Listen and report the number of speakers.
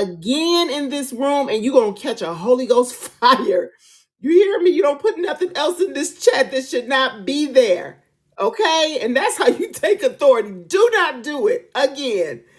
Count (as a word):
one